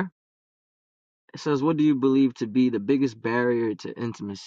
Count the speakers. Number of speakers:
1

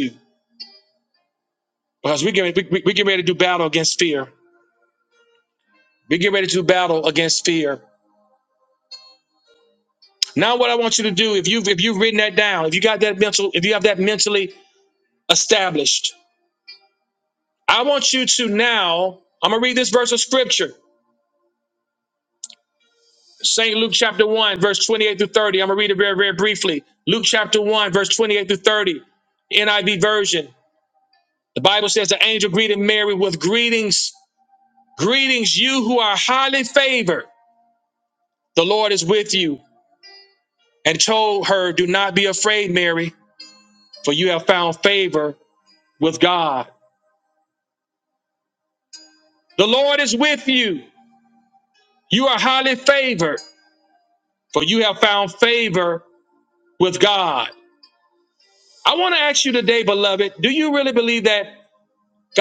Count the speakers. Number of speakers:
1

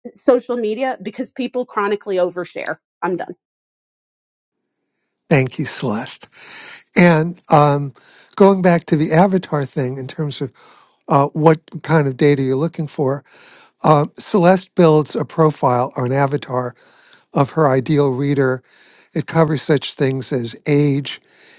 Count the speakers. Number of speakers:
2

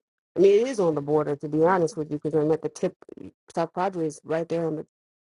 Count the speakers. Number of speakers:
1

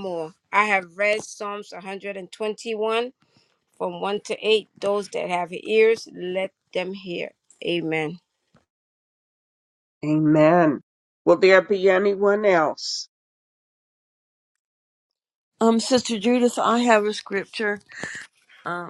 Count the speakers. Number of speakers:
3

